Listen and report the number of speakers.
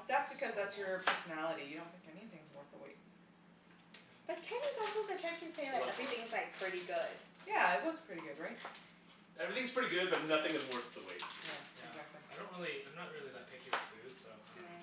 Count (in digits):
4